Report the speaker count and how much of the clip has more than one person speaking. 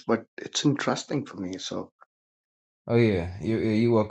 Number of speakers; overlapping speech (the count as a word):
two, no overlap